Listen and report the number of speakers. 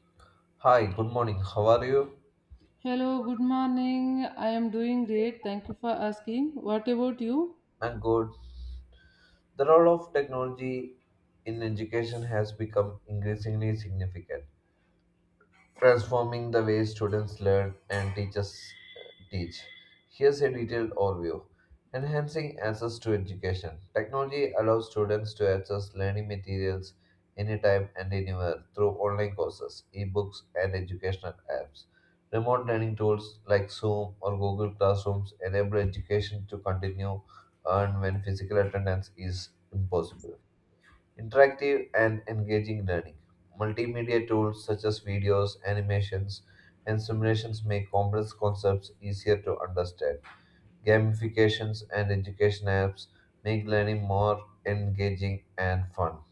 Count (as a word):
two